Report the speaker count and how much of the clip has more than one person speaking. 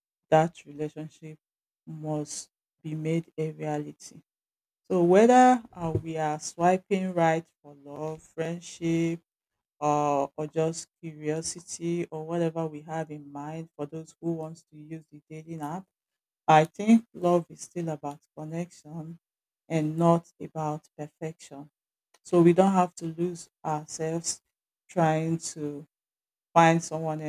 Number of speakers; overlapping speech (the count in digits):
1, no overlap